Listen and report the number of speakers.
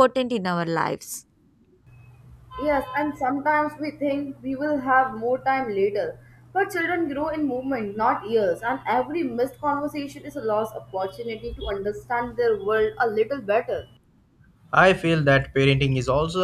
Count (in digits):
3